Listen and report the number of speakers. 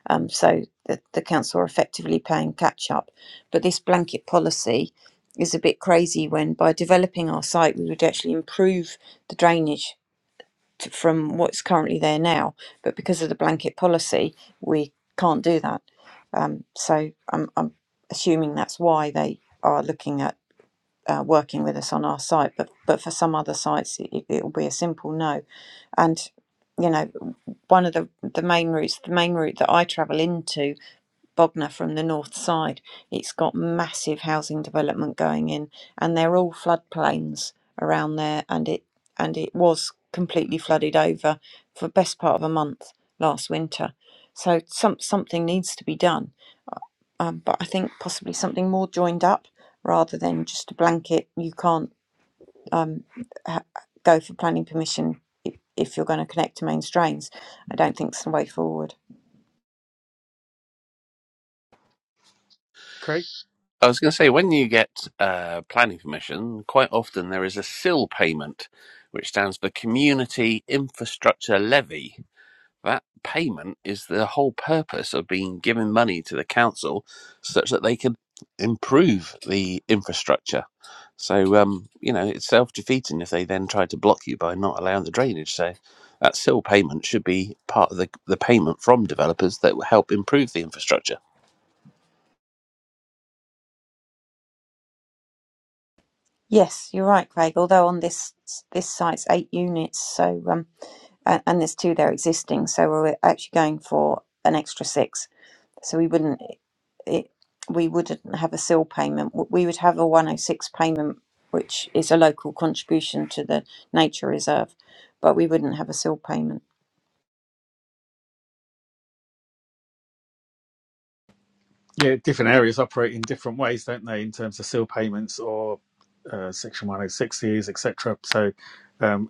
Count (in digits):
3